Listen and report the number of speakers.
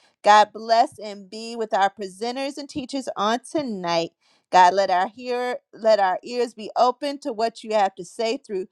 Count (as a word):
one